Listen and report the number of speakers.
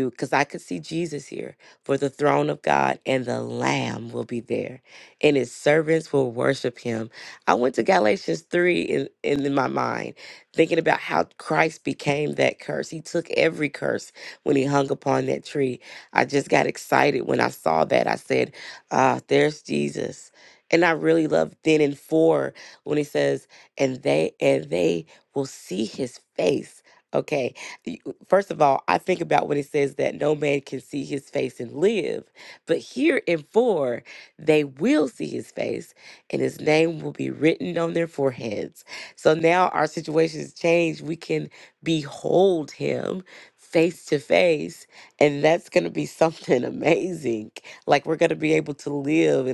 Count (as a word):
one